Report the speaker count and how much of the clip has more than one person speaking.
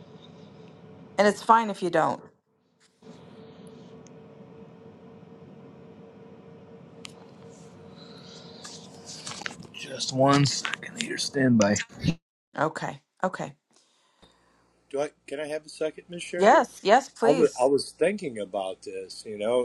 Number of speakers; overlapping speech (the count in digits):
3, about 2%